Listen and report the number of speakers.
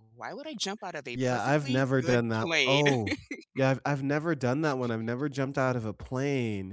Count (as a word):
two